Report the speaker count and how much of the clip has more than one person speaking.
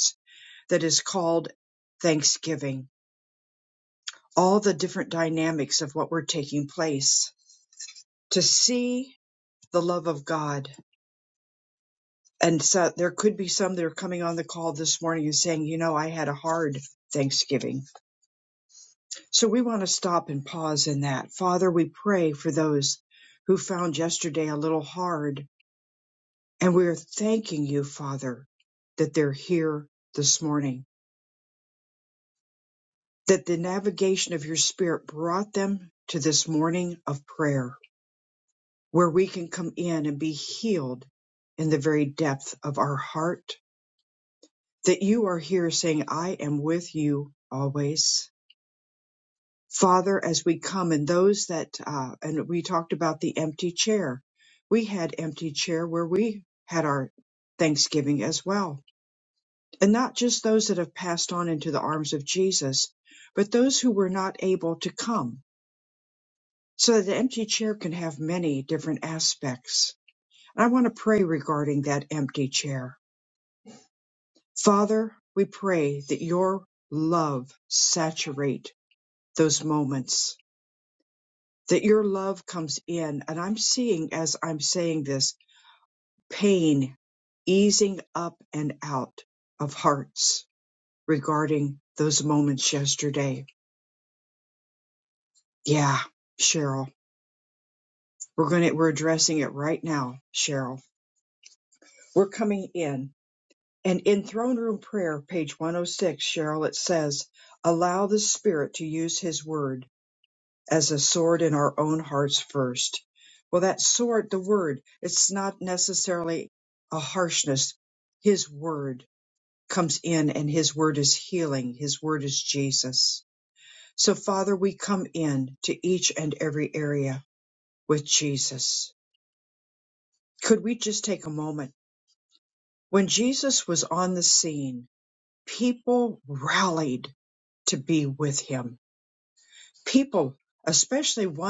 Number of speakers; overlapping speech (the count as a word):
one, no overlap